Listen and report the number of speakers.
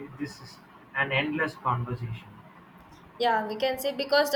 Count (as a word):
two